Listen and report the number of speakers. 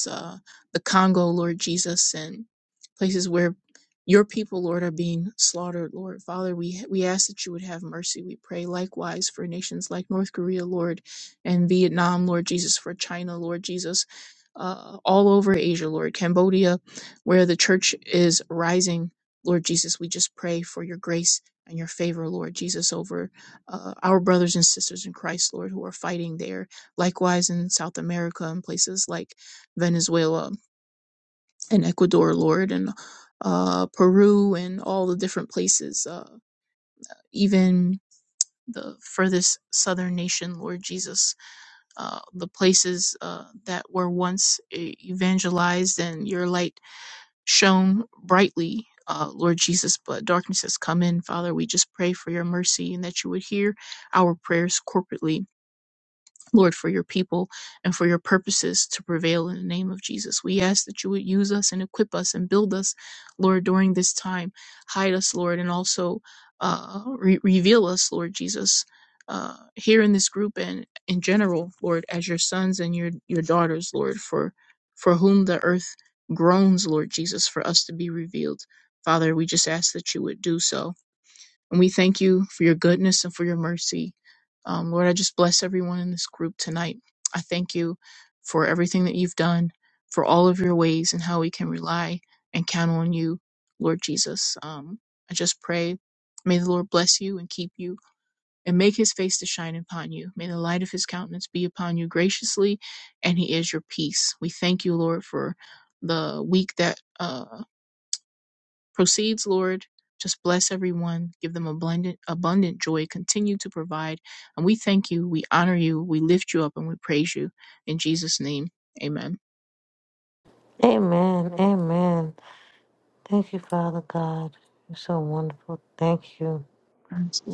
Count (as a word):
two